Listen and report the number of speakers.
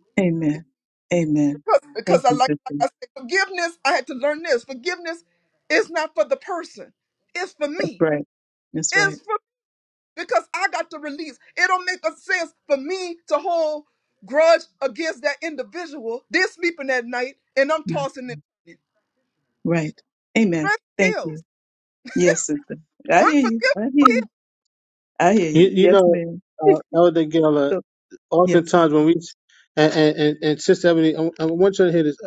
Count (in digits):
3